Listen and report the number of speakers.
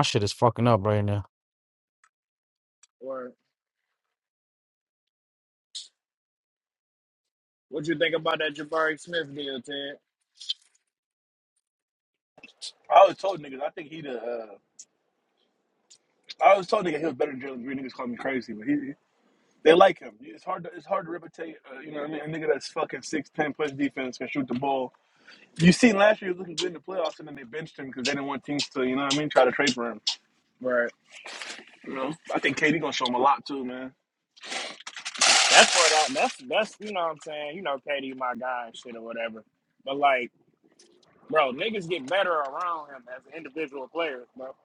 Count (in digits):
3